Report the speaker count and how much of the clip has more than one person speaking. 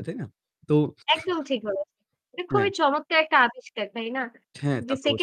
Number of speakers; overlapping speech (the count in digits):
2, about 11%